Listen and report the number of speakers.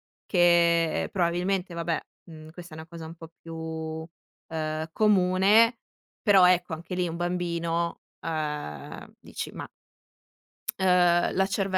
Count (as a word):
one